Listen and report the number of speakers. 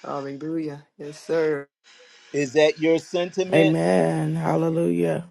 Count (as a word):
three